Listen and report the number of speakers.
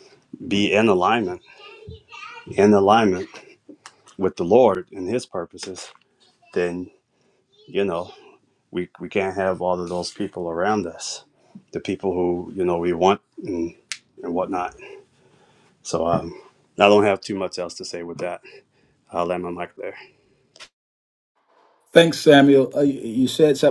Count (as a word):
two